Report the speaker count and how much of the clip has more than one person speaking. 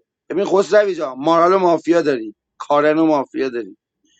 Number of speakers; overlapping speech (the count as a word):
one, no overlap